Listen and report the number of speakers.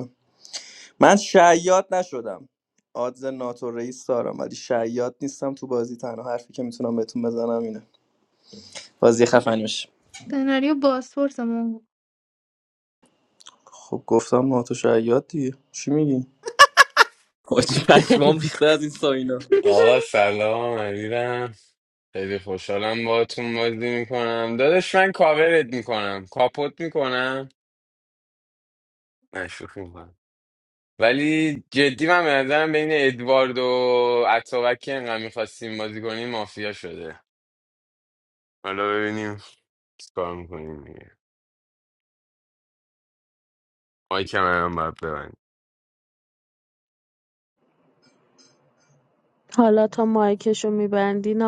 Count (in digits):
4